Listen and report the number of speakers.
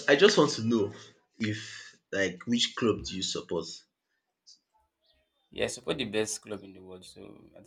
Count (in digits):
2